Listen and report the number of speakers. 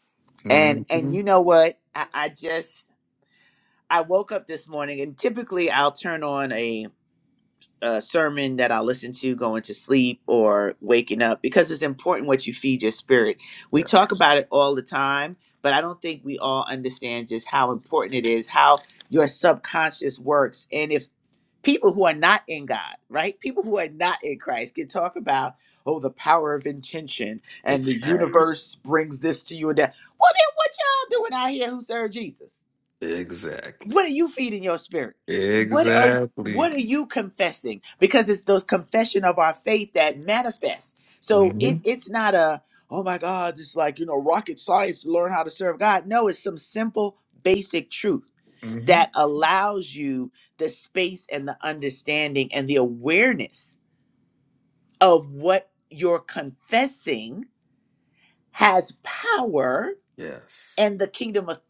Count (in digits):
2